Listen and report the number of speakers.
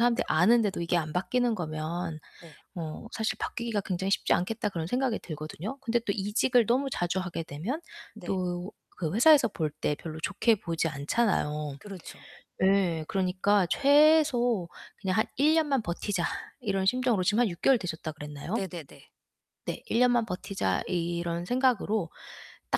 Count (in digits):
2